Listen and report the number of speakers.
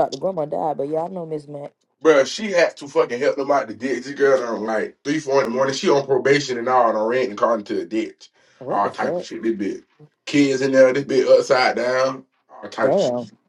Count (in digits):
2